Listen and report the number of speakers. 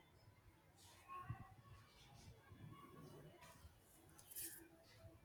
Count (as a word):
zero